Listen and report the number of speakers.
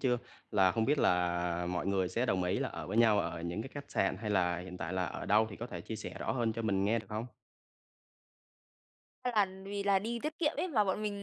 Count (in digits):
2